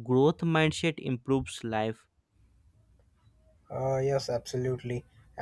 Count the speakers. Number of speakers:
2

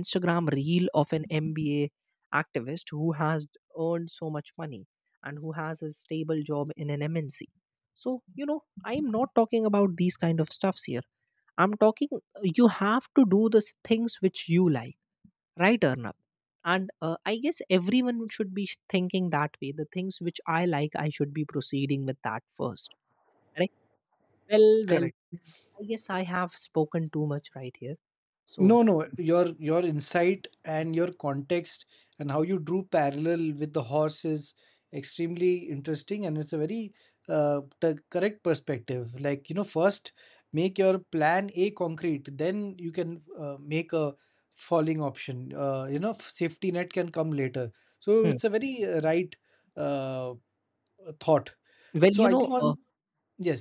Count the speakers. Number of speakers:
2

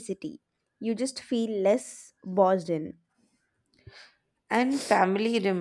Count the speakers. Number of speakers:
2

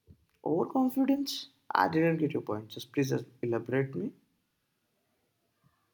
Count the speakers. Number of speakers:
1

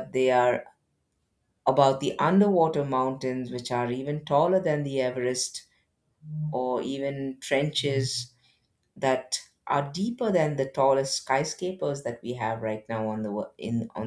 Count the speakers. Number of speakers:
1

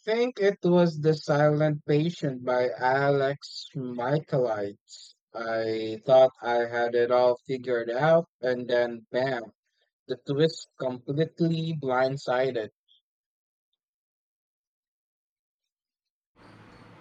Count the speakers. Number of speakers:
1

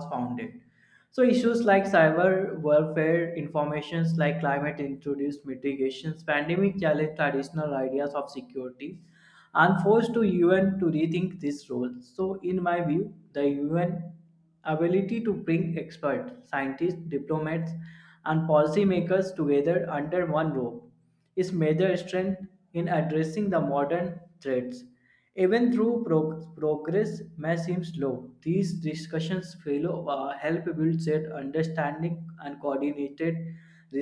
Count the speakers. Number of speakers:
1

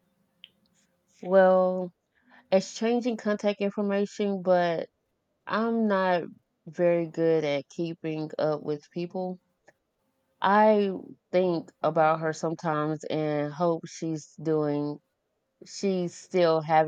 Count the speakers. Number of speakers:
1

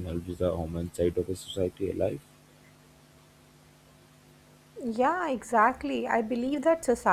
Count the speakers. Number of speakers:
2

